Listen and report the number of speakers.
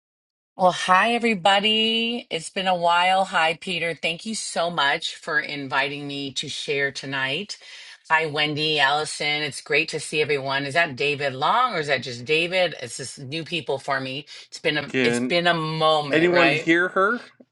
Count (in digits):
2